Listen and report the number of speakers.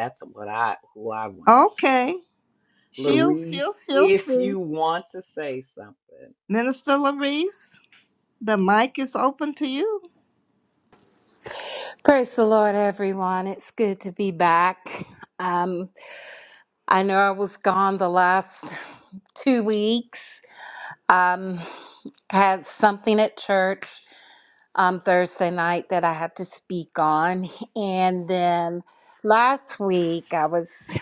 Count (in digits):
3